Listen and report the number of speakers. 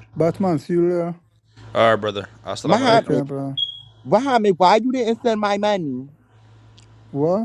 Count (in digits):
3